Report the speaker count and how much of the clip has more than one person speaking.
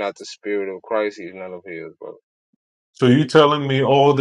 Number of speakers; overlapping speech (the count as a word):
two, no overlap